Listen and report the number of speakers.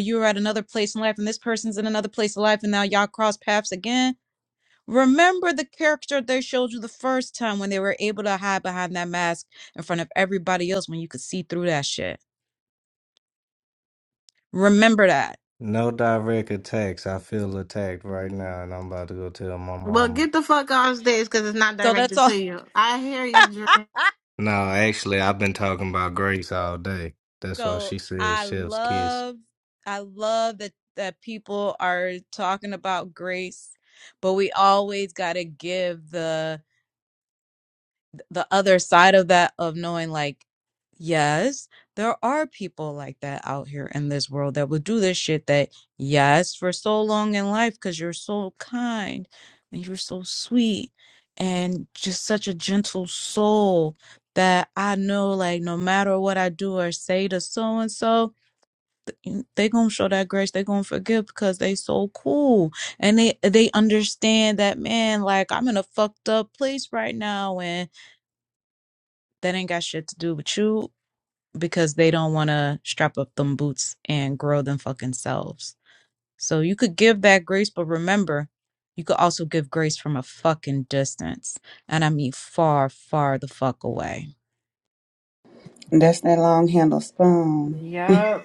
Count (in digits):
4